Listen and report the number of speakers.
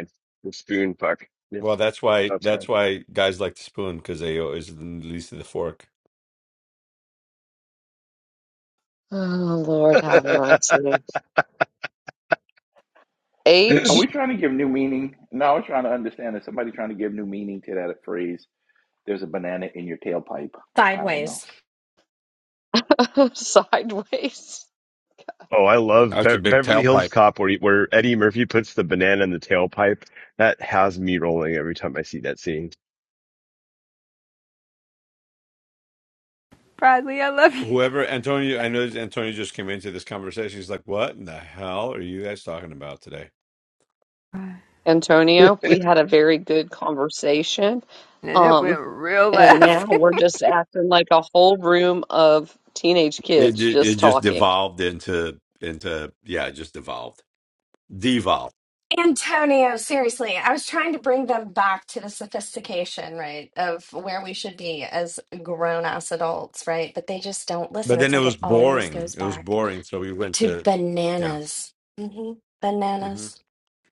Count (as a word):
six